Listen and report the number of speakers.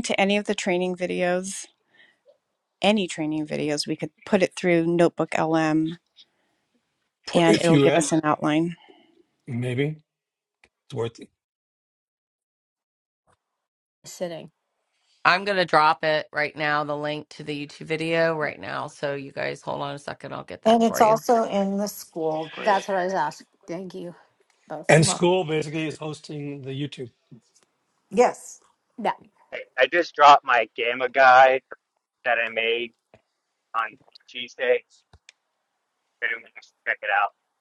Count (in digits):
6